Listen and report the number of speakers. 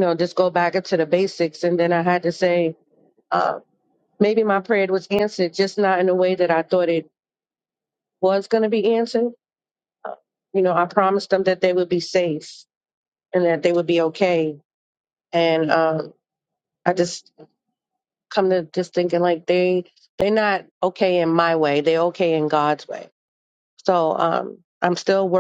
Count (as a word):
one